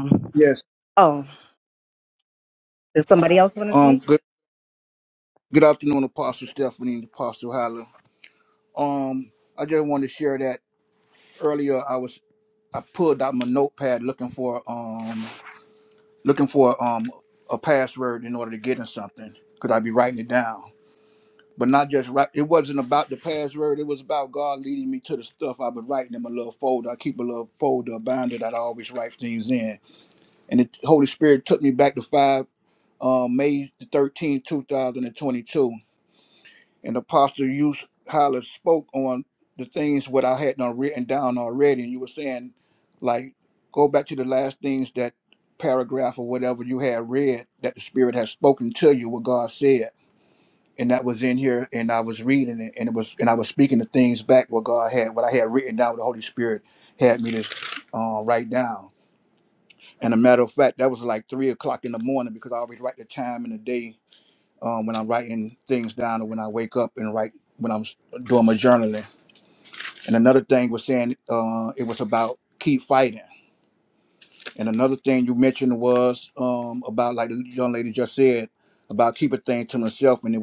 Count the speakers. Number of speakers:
two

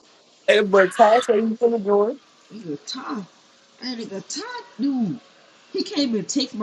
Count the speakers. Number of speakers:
two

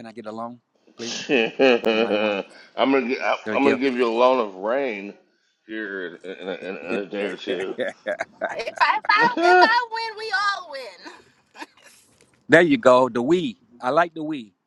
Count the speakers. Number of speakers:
three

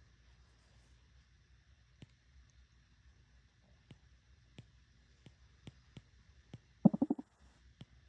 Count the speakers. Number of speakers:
zero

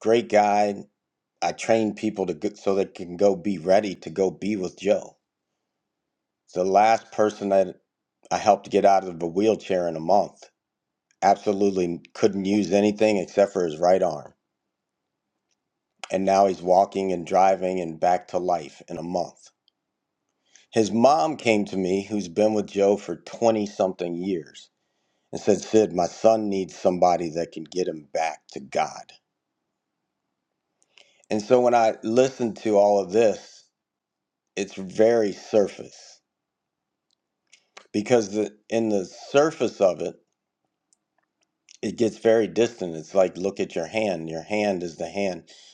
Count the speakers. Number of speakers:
one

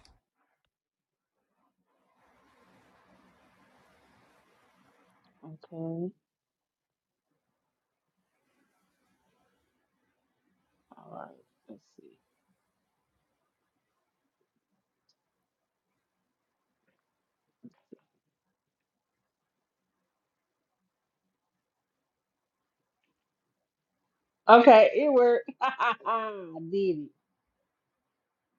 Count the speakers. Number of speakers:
one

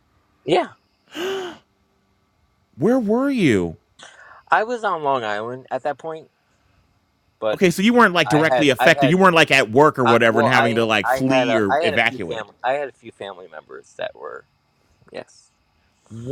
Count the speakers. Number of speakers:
two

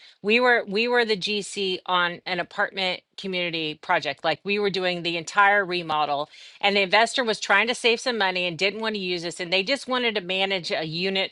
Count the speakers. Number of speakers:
one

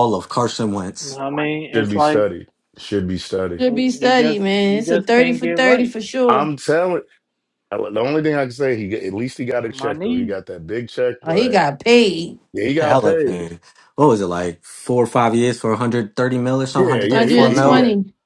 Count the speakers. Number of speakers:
four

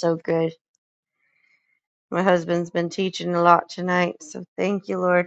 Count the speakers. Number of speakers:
one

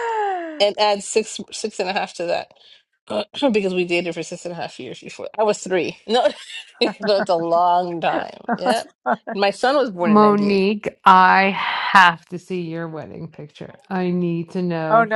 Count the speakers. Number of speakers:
three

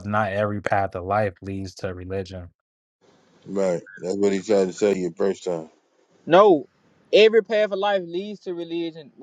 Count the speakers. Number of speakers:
three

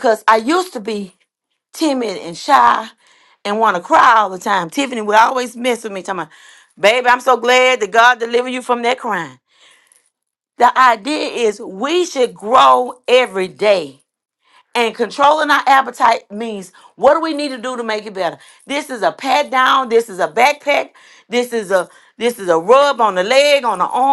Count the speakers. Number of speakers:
one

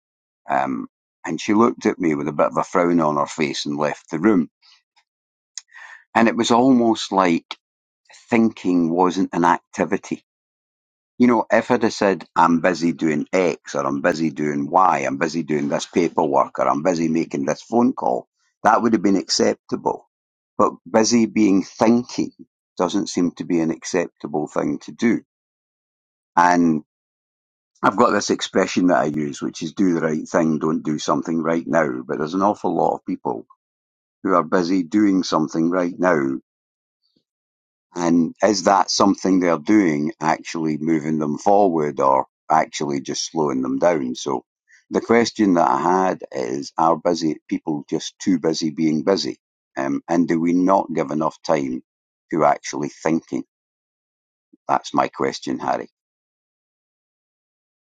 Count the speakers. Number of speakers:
one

